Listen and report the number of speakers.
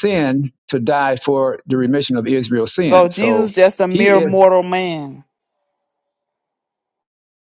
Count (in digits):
2